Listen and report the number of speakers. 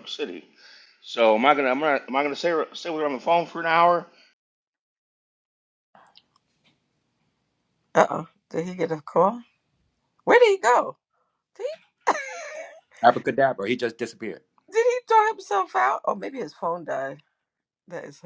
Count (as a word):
three